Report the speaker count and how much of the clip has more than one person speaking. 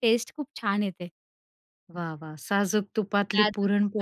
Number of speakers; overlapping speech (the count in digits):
2, about 18%